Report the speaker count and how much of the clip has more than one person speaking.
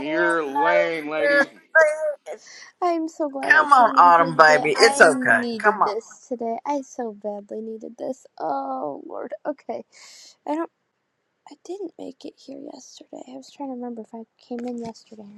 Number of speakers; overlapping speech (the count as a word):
three, about 23%